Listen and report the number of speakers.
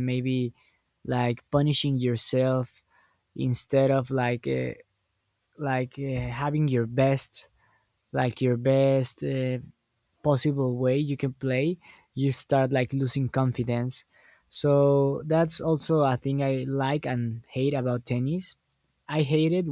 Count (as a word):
one